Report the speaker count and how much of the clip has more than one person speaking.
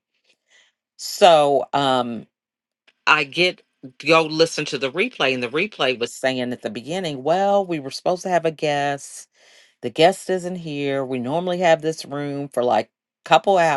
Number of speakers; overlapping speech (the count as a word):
one, no overlap